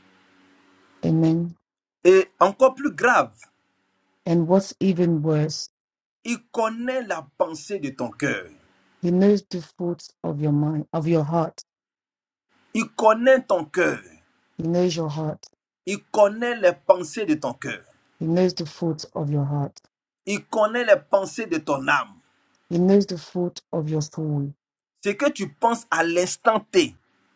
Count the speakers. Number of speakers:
two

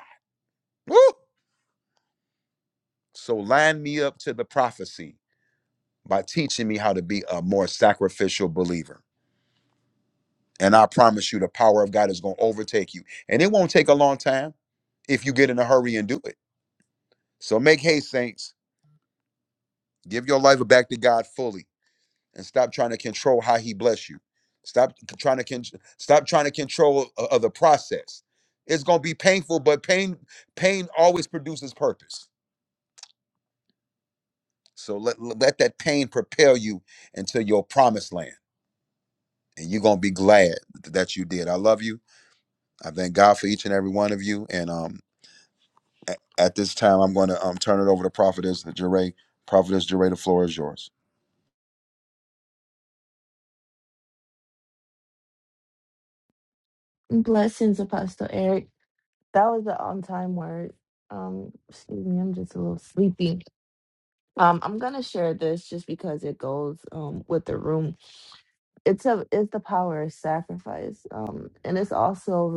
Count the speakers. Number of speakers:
two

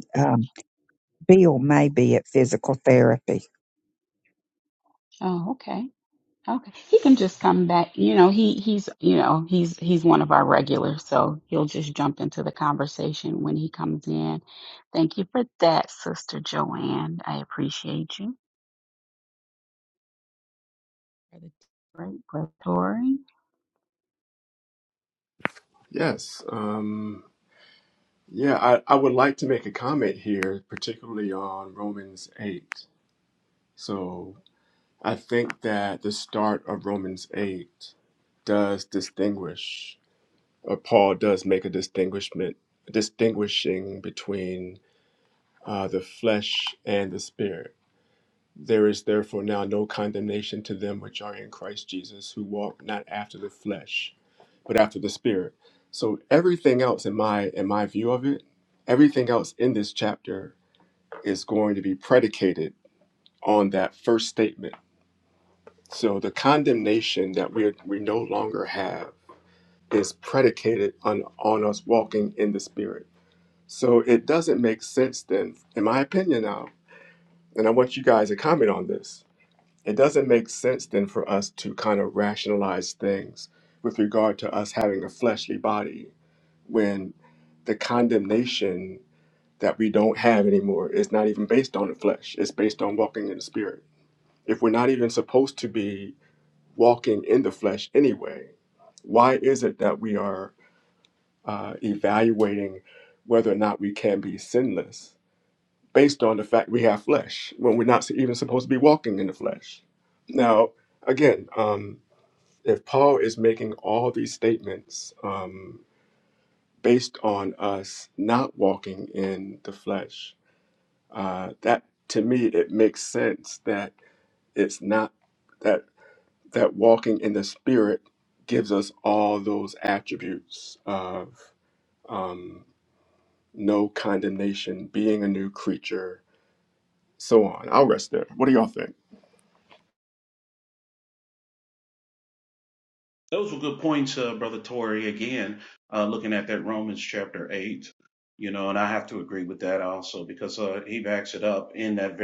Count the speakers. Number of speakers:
four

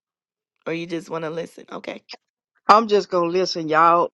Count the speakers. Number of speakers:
two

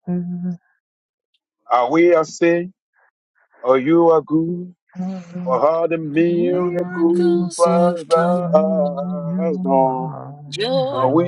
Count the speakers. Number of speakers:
three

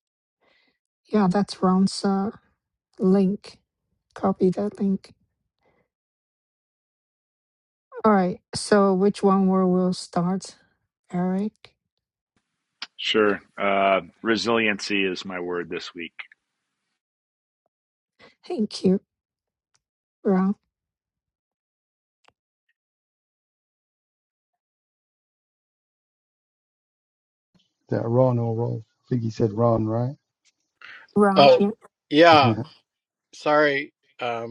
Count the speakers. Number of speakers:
four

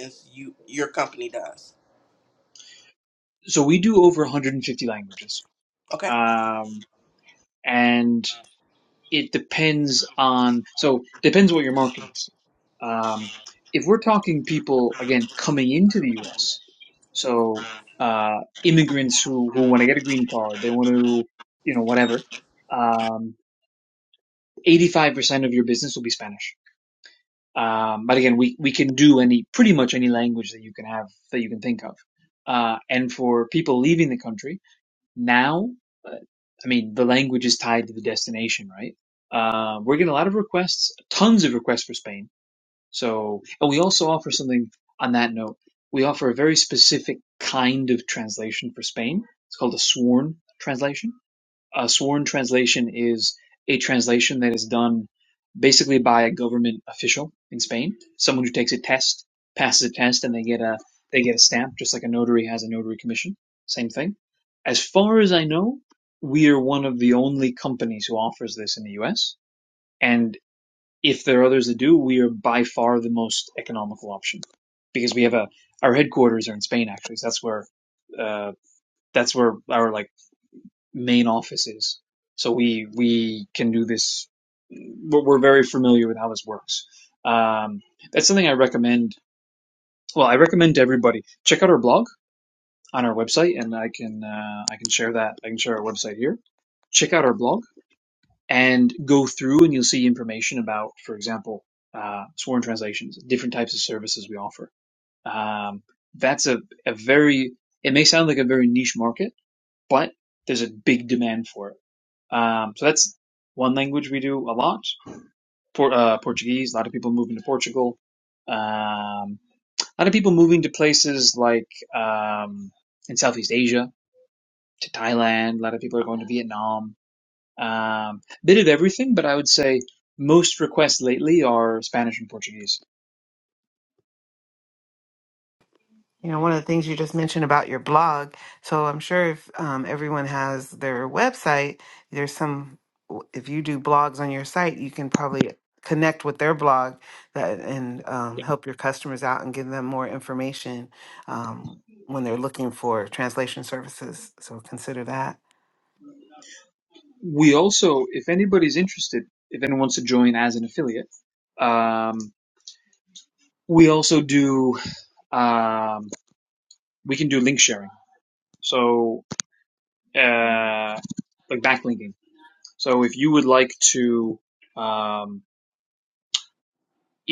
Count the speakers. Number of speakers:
three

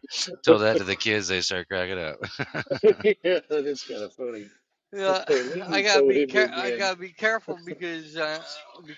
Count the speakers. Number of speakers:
three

